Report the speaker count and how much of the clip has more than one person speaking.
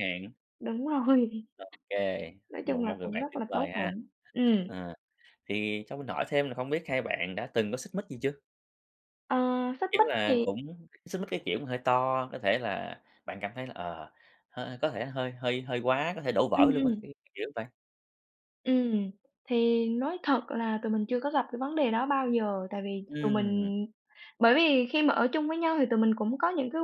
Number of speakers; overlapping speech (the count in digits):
2, about 11%